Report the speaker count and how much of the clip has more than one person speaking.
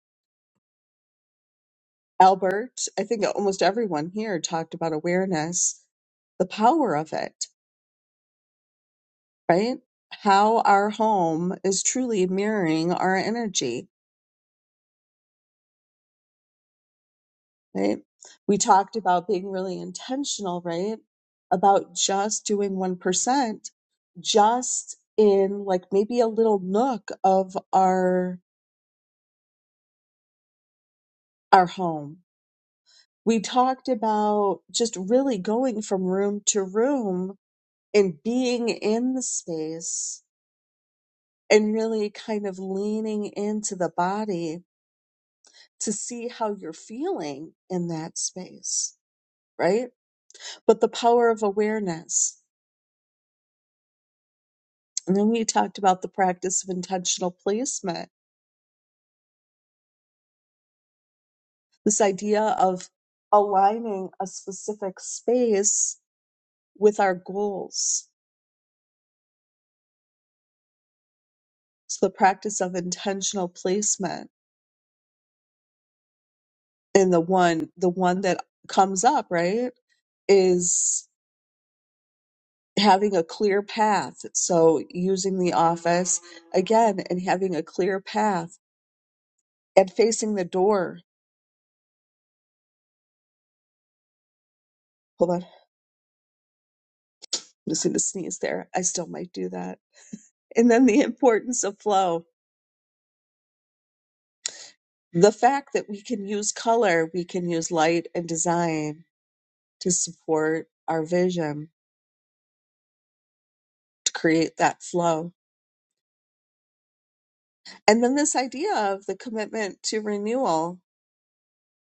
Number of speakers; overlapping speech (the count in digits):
1, no overlap